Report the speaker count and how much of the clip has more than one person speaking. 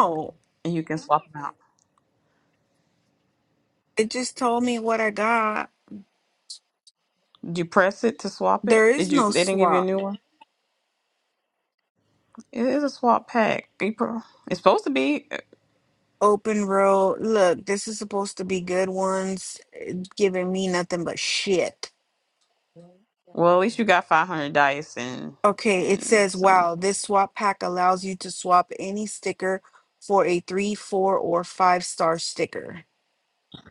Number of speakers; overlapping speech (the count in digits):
2, about 6%